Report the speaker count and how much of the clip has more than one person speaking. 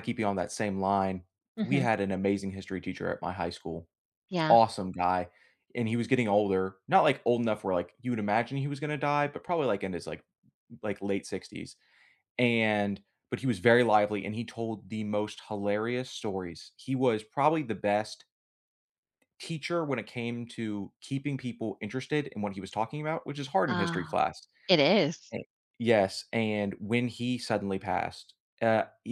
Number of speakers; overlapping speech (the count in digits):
2, about 3%